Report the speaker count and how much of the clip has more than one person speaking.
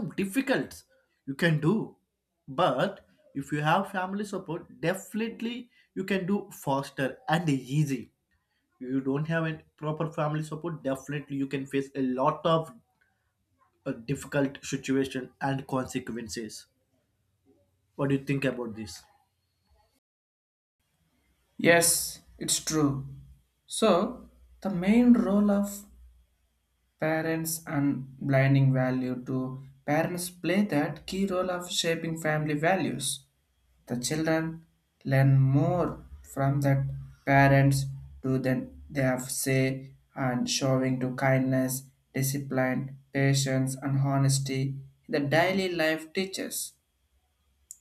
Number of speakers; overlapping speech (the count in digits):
2, no overlap